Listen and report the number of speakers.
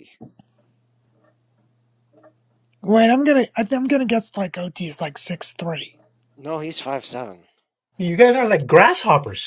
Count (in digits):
3